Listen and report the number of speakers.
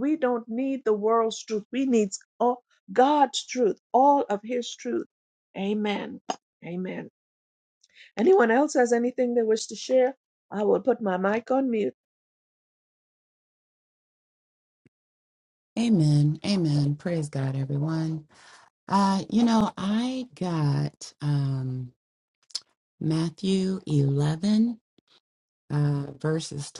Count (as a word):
two